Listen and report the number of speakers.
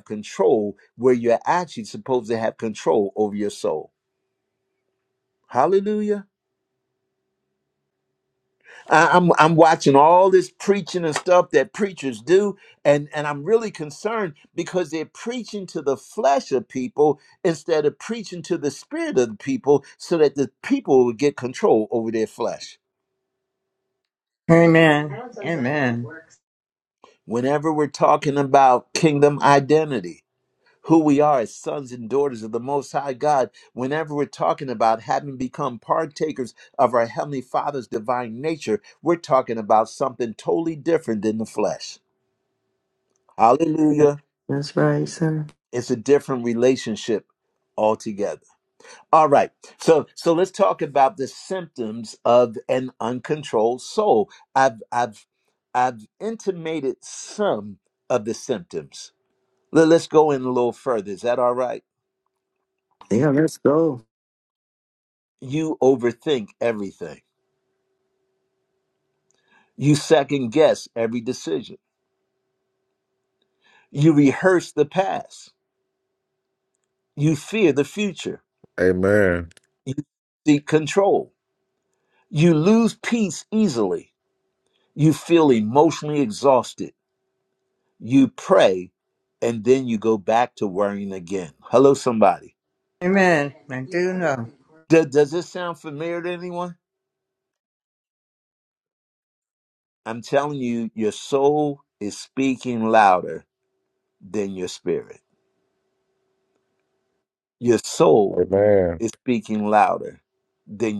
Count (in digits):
4